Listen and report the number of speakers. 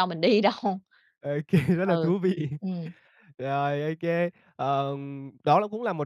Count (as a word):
two